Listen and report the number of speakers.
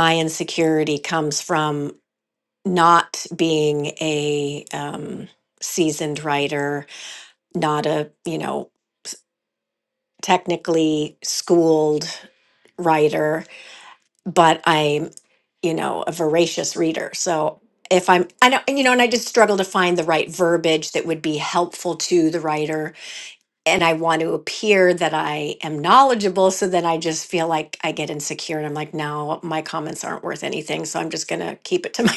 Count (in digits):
1